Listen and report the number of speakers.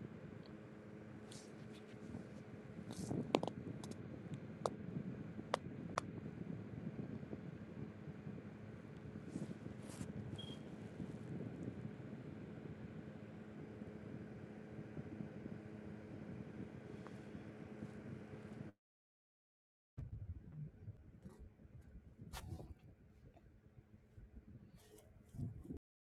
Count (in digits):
0